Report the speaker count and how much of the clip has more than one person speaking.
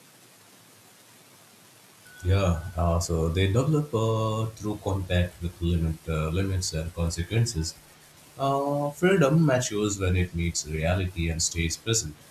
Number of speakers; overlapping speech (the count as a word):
one, no overlap